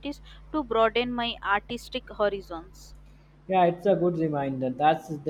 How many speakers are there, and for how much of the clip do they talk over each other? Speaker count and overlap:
two, no overlap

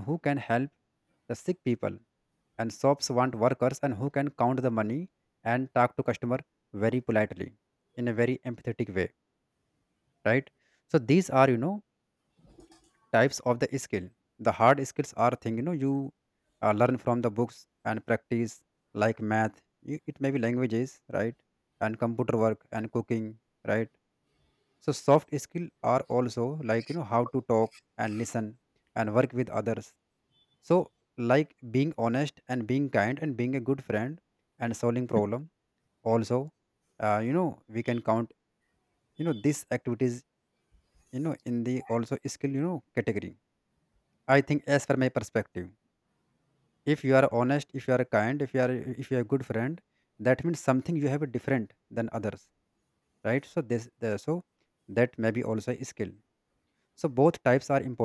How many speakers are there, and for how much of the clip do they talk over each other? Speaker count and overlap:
one, no overlap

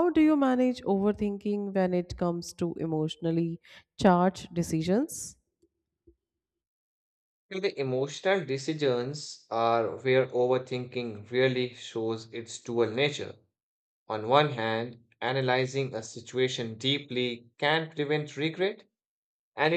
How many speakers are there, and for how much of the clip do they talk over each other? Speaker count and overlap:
two, no overlap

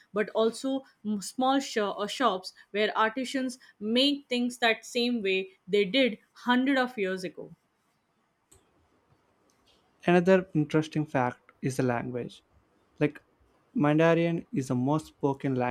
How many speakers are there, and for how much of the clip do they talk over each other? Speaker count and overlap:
two, no overlap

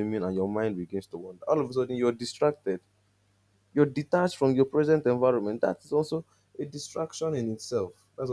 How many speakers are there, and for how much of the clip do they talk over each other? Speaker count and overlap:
one, no overlap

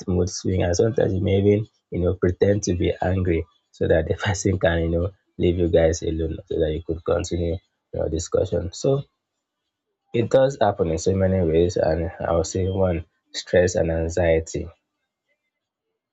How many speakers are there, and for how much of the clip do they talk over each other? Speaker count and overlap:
one, no overlap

